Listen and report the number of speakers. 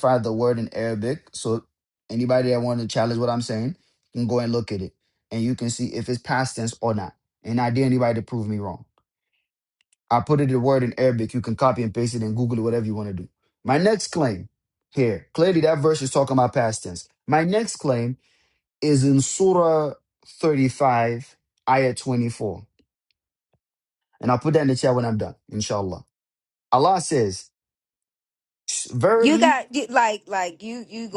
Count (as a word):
two